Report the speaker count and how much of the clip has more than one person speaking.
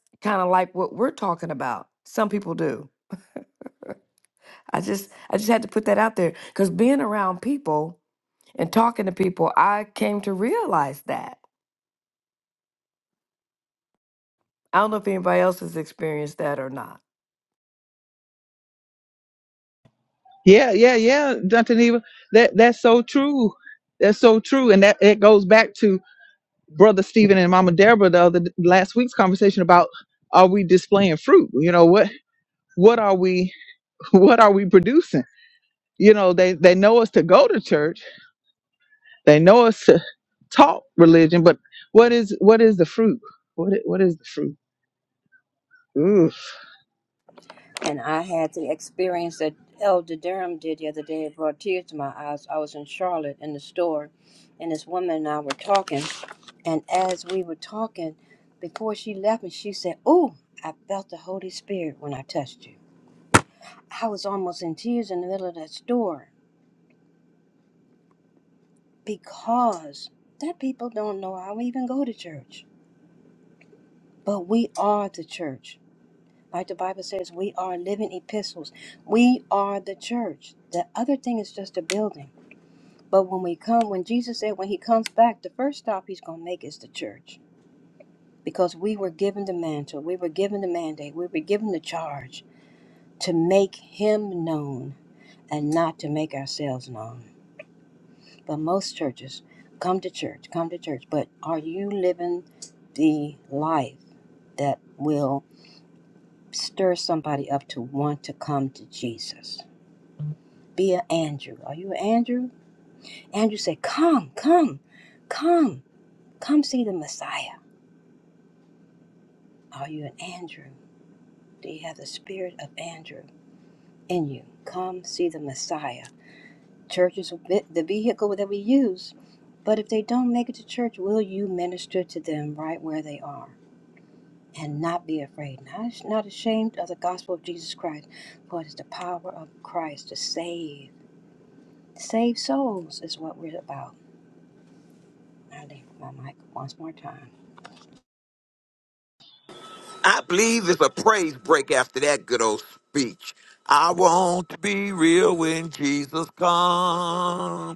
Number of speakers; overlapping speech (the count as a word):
four, no overlap